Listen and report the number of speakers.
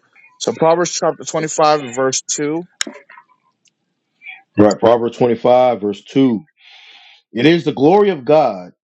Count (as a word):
two